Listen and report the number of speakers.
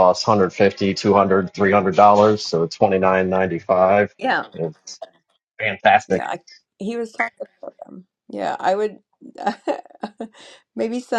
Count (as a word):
two